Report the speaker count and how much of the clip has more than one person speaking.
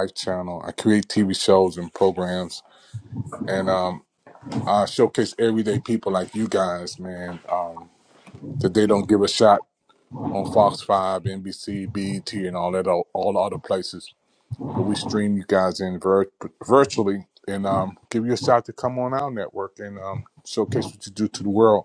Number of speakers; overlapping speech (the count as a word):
one, no overlap